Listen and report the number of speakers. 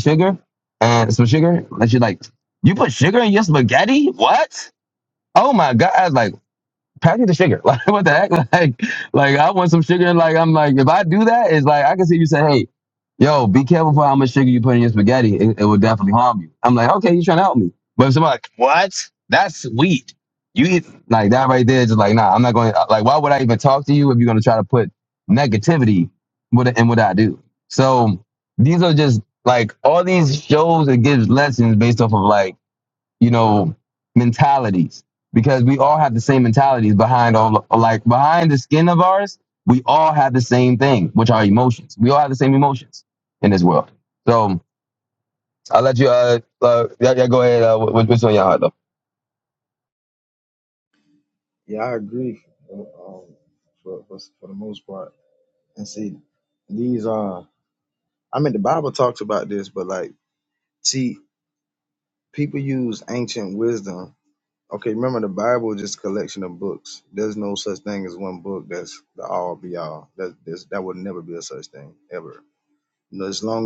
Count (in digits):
2